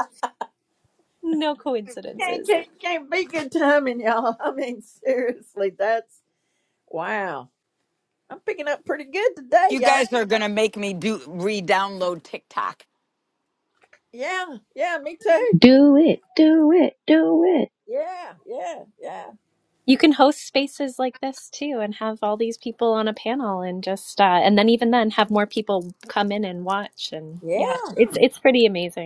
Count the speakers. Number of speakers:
4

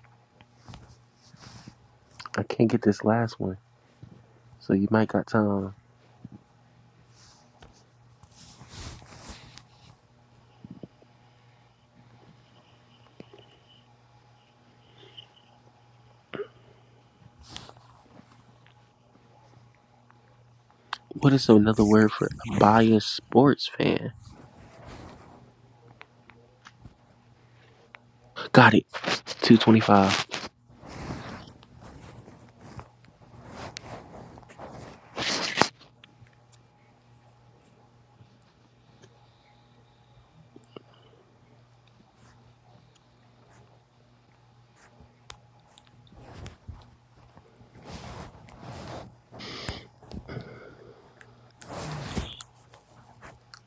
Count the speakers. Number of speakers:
1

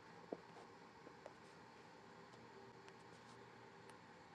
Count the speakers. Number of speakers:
0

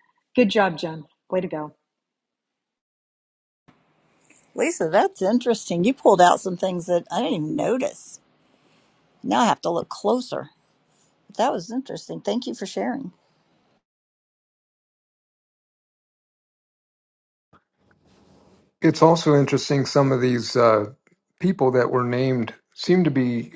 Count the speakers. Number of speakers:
3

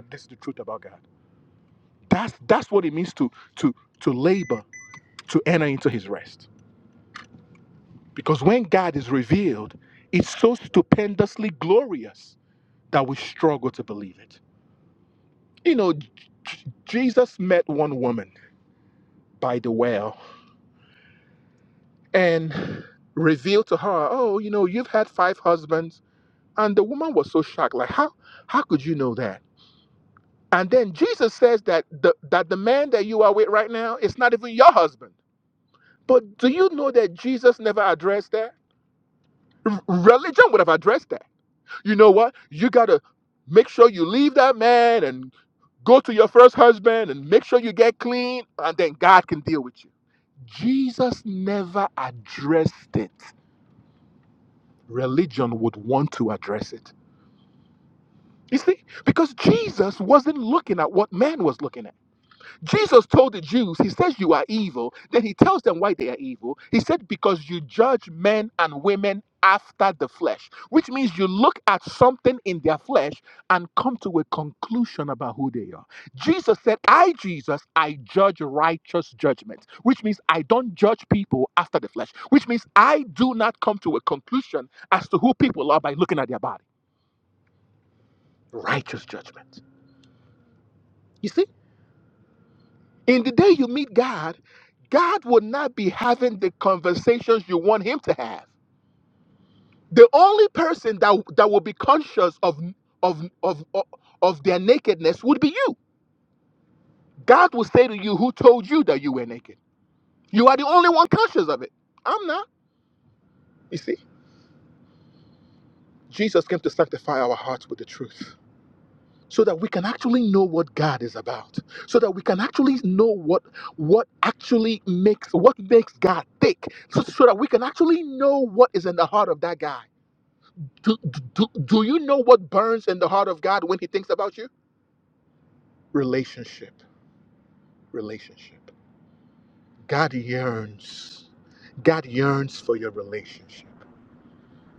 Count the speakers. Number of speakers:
1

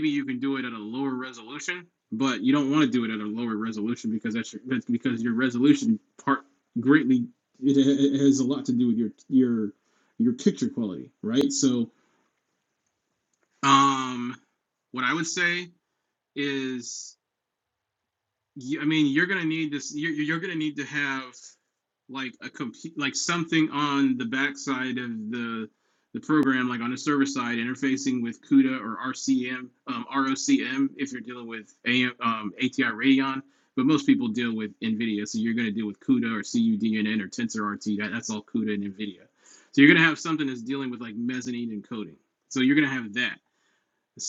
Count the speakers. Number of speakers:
1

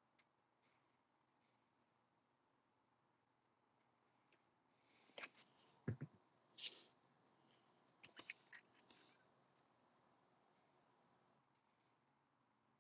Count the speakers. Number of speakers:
0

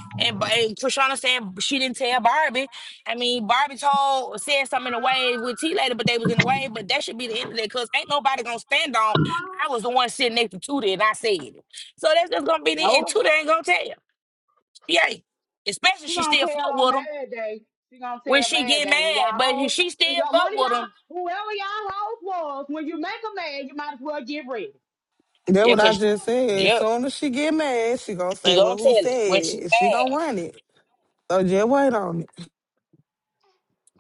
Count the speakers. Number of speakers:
3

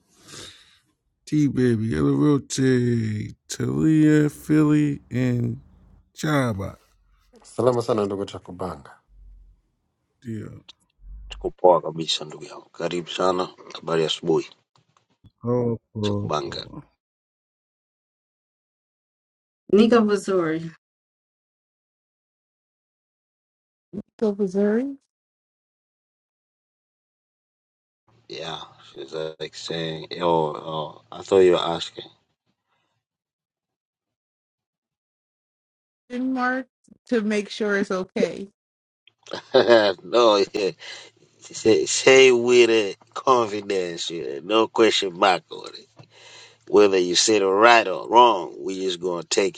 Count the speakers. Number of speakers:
5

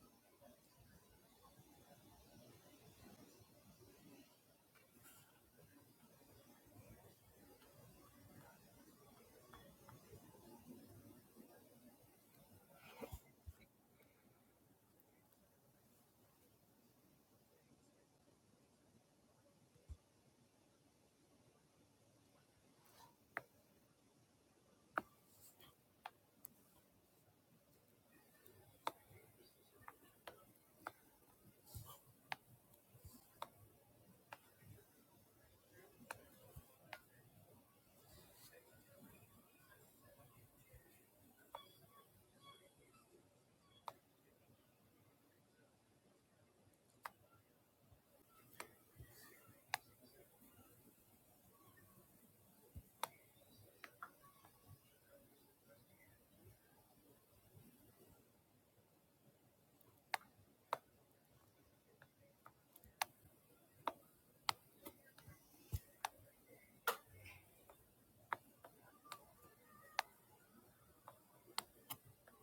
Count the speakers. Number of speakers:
0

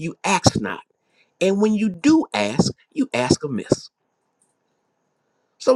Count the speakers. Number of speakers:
1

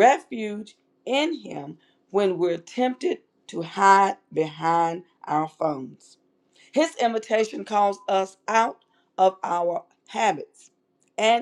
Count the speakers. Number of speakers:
1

